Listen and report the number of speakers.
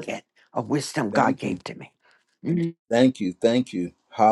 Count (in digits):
2